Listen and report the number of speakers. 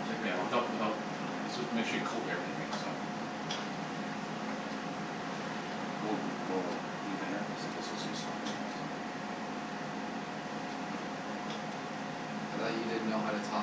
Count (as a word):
two